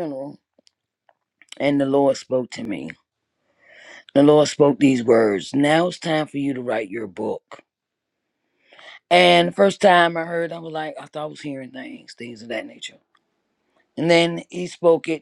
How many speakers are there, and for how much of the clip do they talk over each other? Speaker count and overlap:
one, no overlap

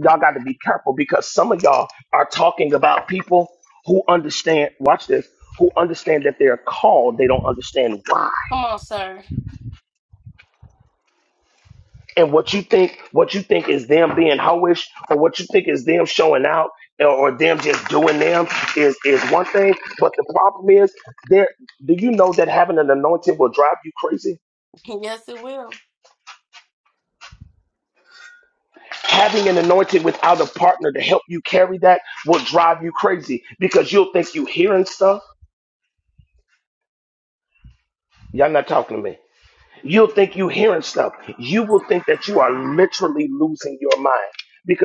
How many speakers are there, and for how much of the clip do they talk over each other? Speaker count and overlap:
two, no overlap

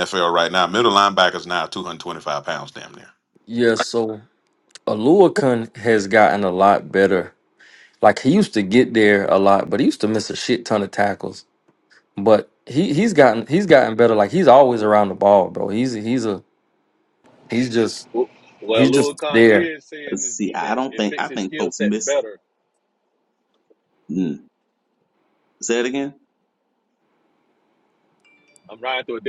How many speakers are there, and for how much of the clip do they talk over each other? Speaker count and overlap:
four, about 10%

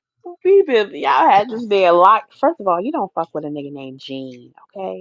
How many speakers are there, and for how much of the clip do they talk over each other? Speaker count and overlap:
one, no overlap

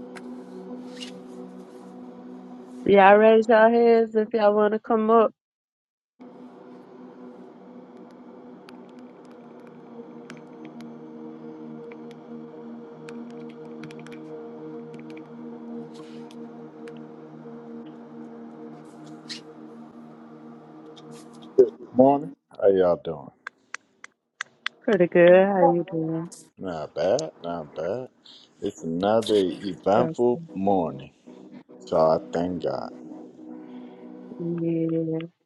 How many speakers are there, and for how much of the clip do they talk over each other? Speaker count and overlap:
two, about 1%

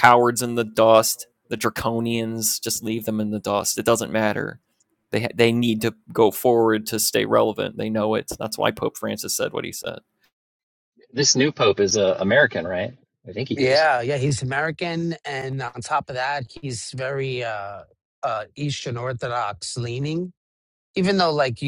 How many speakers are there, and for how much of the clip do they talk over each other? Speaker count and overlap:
three, about 1%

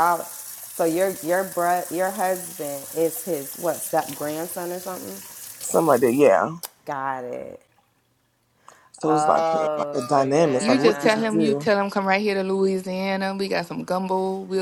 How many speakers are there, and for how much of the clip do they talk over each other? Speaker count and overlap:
three, about 18%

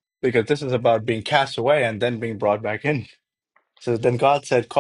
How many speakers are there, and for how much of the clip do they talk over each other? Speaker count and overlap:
one, no overlap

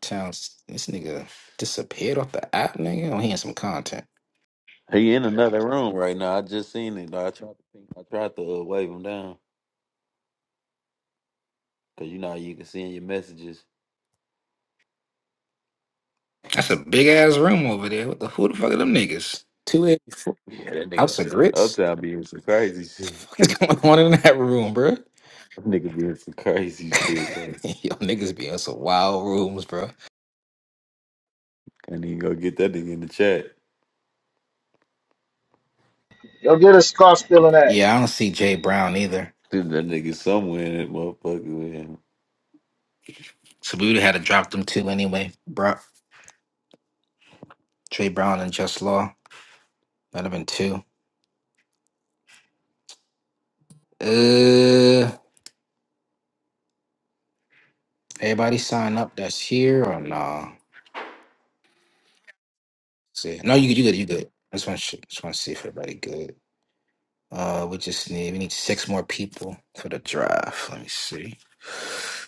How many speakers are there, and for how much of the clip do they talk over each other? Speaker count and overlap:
three, about 1%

